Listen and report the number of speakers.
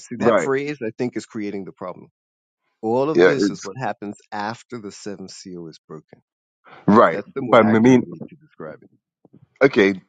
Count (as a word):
two